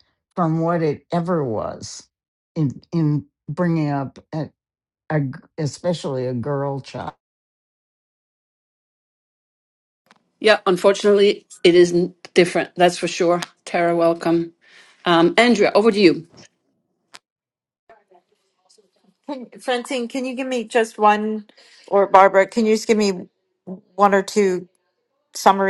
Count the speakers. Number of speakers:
three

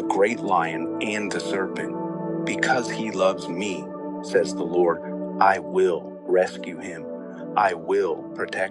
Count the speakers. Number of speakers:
one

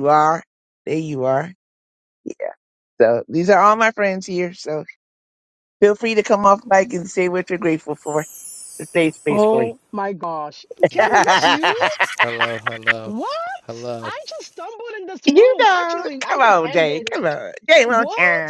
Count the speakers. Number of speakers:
three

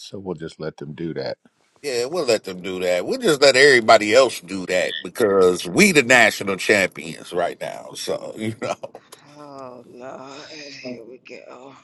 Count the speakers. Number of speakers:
three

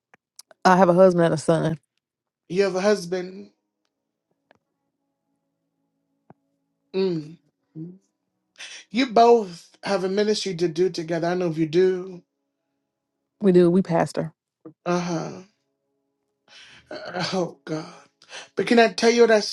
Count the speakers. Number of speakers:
two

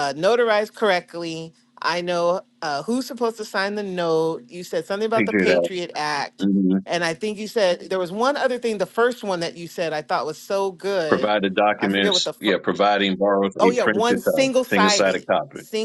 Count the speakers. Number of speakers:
two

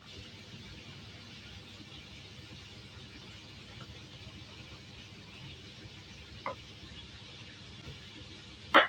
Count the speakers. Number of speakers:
zero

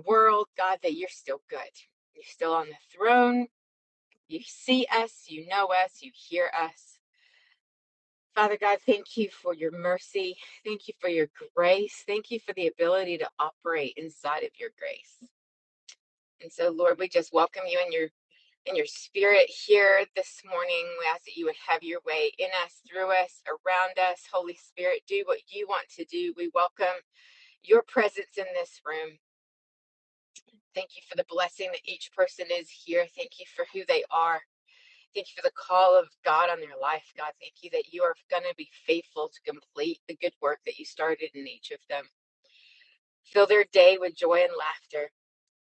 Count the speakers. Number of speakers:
one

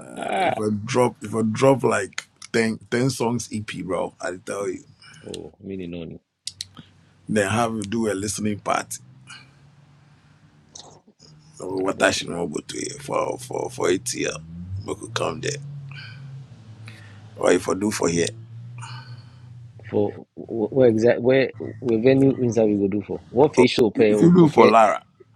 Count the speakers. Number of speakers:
two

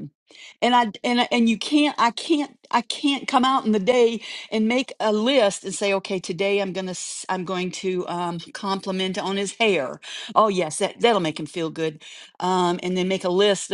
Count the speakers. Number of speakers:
one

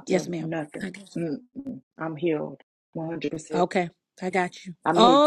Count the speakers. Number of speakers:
two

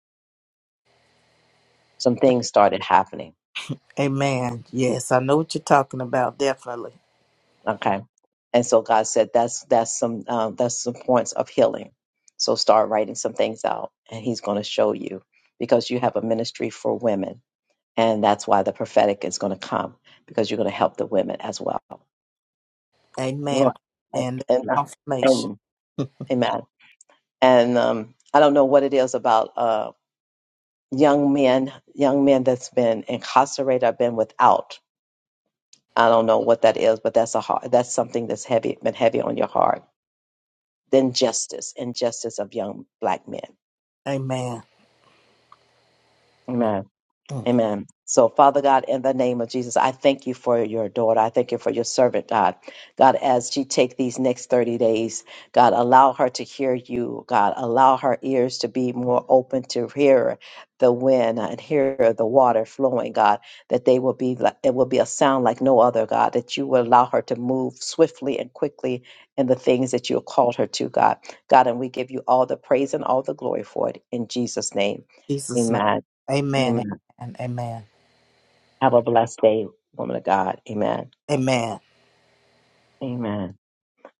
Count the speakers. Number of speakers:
two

